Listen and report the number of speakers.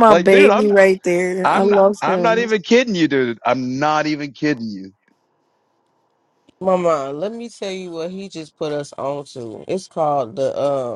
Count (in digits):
3